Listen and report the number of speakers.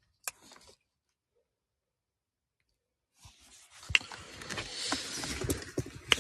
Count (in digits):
0